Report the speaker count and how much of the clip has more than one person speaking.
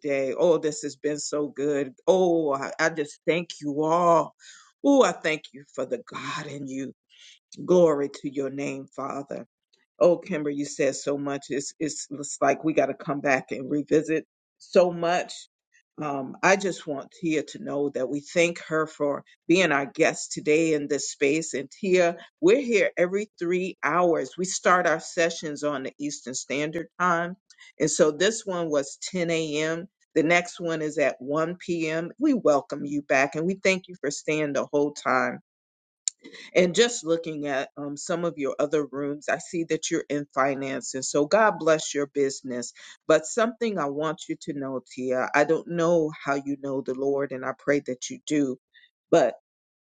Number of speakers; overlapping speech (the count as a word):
one, no overlap